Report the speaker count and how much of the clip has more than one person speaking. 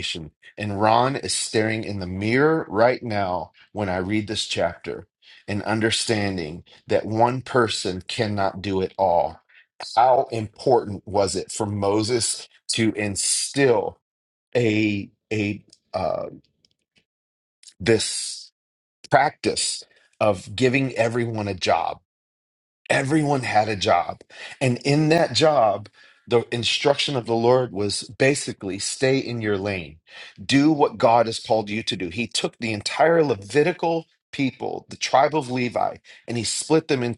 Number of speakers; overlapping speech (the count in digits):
1, no overlap